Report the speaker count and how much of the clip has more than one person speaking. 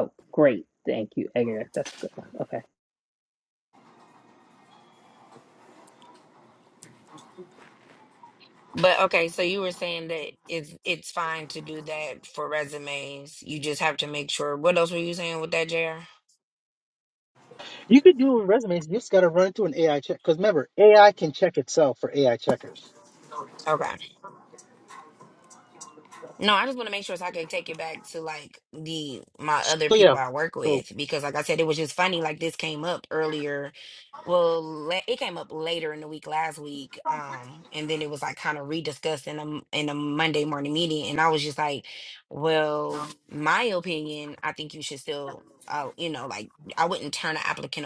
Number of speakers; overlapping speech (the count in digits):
3, about 1%